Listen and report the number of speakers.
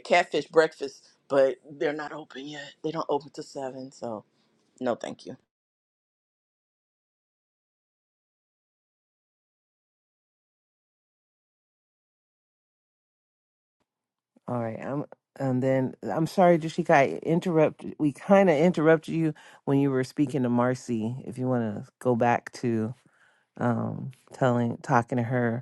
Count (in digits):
2